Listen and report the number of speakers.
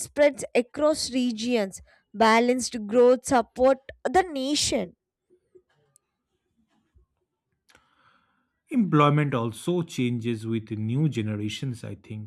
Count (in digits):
2